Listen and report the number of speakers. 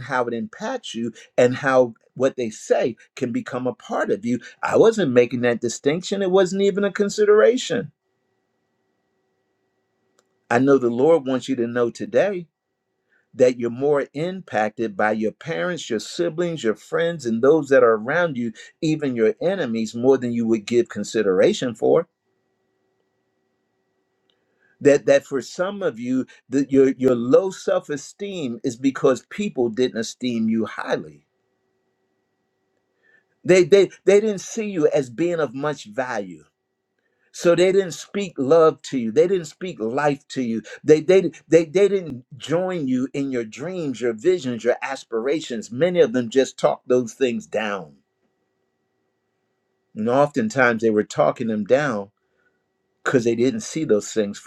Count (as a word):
one